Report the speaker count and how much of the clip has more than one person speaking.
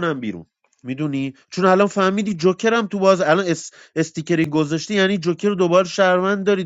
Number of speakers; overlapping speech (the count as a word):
one, no overlap